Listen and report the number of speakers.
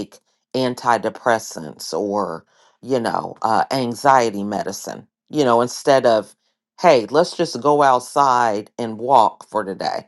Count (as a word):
one